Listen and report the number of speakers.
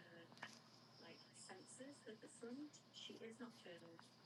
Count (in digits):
0